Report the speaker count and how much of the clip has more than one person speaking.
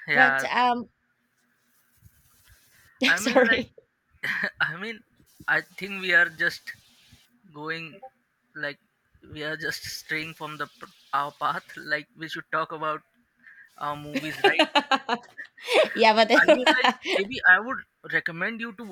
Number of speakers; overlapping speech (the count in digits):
2, about 5%